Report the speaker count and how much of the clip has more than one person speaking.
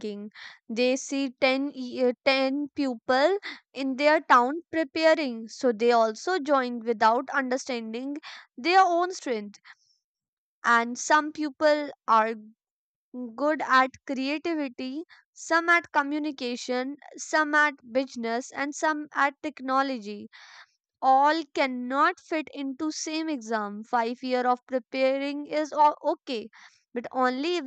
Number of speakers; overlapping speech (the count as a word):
one, no overlap